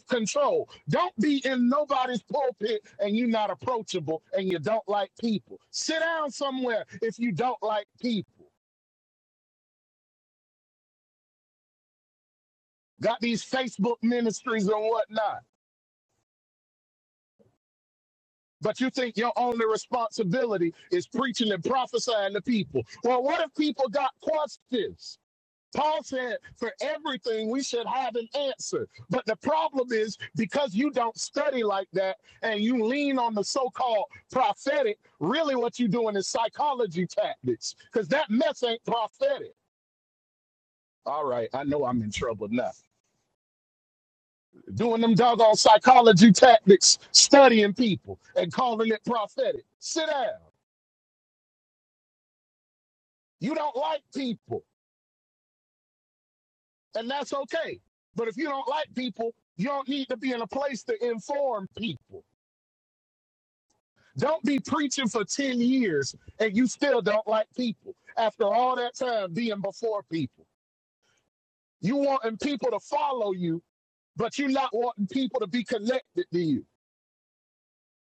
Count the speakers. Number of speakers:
one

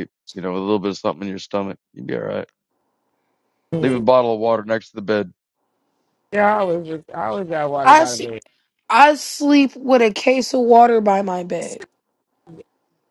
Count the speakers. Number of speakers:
three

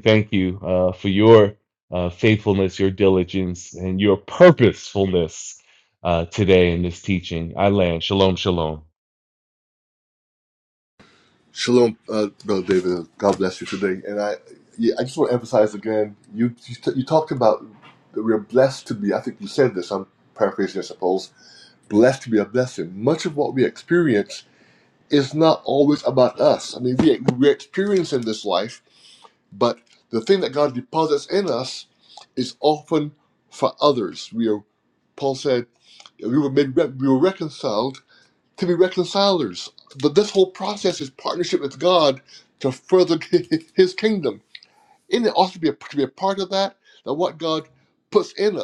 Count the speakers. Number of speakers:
two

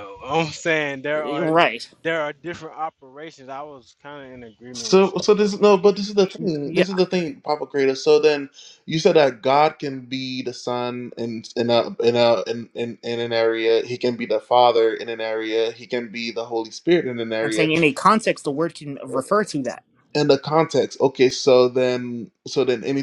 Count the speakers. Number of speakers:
three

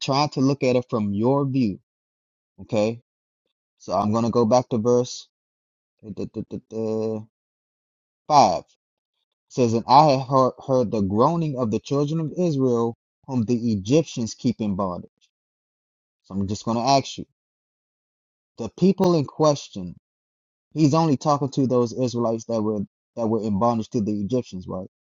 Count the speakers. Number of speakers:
one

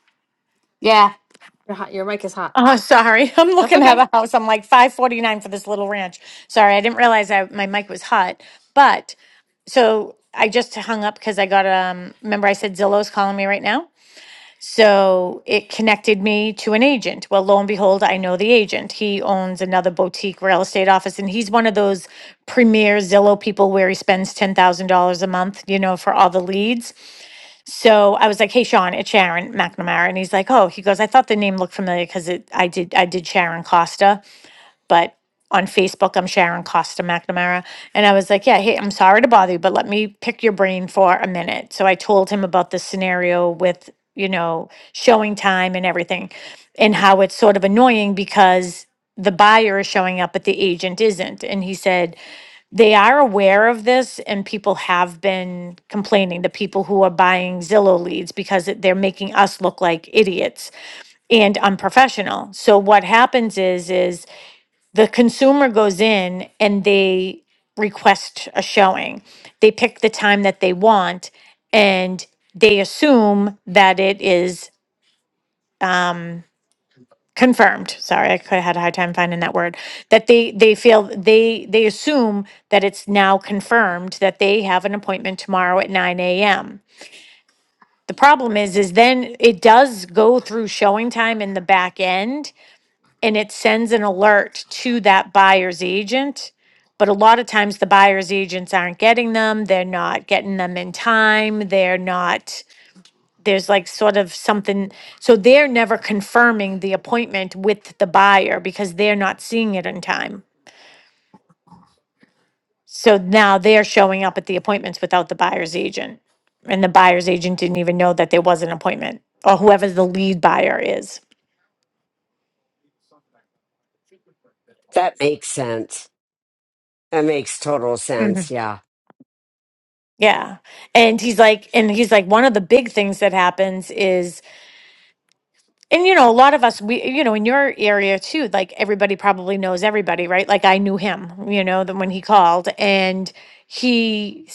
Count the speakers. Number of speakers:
three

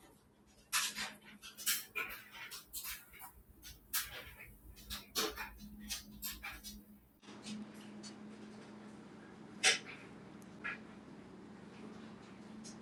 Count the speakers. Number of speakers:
zero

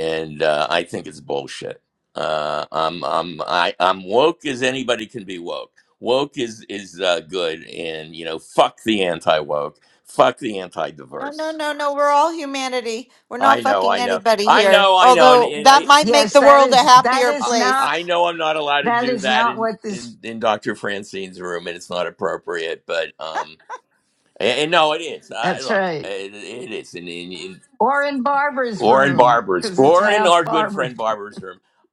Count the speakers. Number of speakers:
three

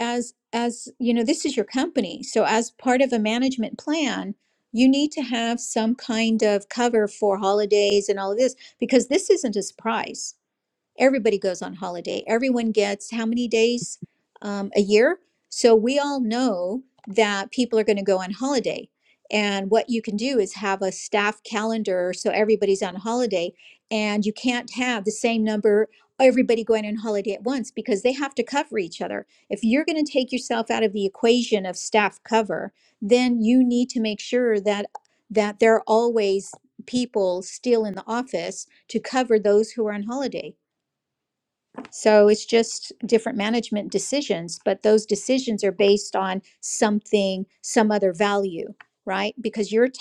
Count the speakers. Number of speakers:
one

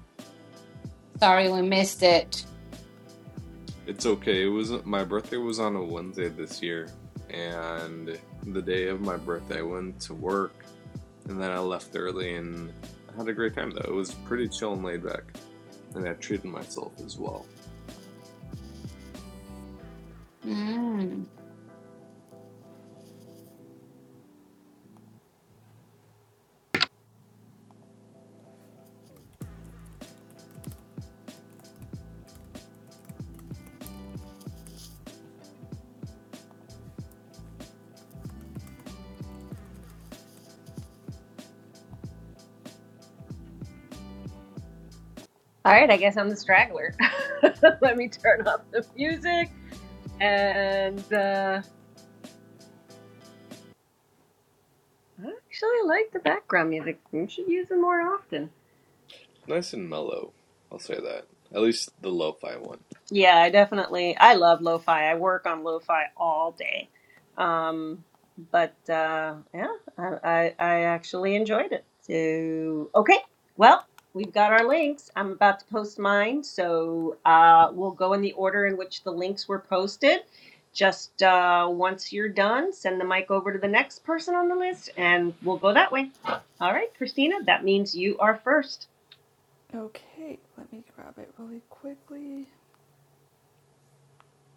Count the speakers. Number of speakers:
four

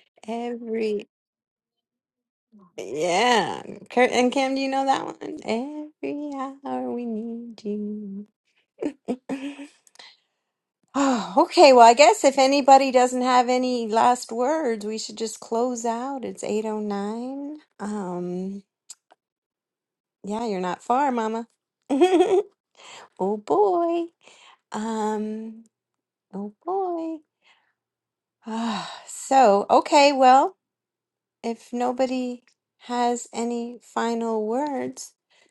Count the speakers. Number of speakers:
one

